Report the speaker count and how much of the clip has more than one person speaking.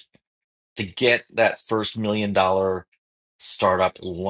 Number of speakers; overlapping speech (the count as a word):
one, no overlap